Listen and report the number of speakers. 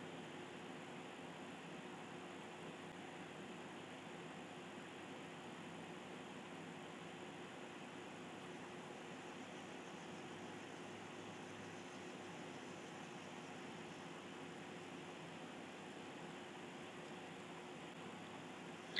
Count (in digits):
0